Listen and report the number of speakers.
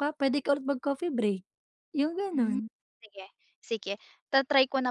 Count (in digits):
2